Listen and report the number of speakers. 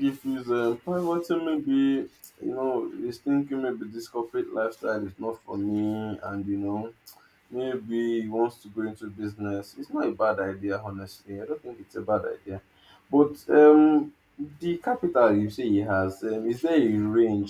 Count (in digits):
1